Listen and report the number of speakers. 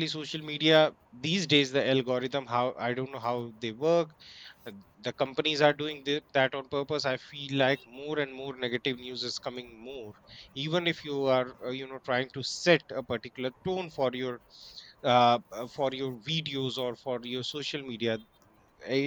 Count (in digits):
1